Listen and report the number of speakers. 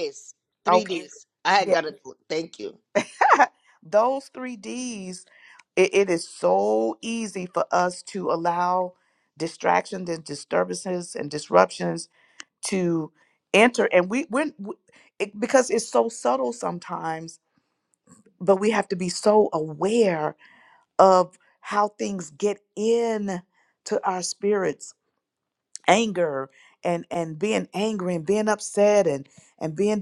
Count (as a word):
two